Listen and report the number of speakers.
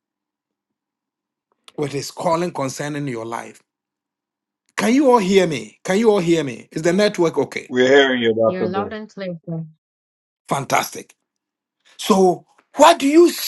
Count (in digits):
3